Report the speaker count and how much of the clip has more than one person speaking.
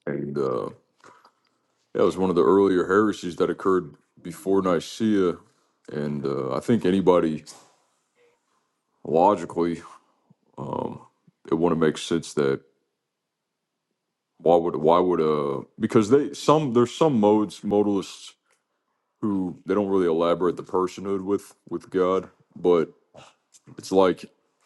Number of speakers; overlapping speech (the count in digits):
1, no overlap